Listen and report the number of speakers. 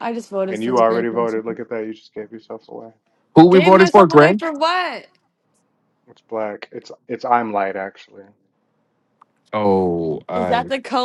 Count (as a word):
three